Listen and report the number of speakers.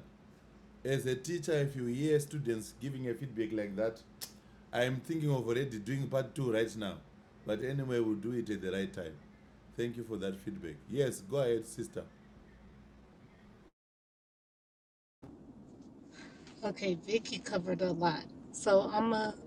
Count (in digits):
2